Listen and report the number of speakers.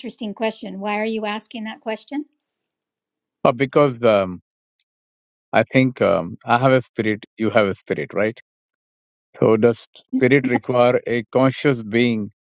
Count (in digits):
2